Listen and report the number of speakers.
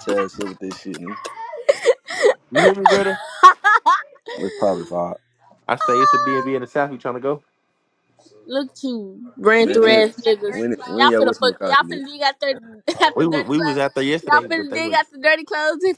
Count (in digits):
3